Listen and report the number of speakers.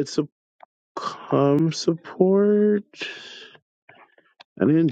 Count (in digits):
1